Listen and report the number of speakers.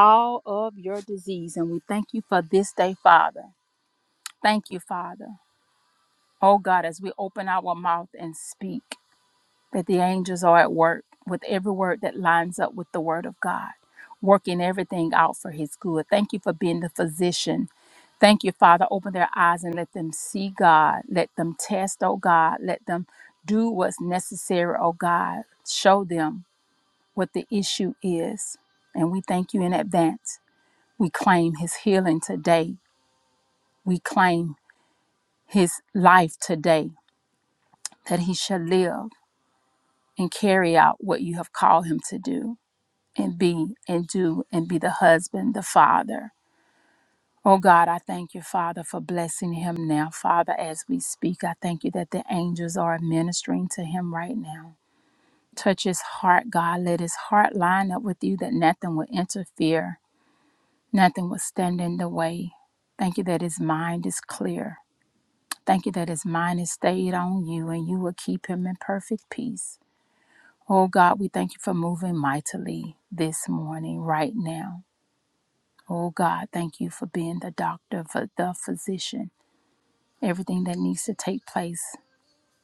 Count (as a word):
one